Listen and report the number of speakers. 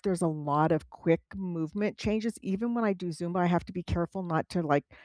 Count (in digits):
1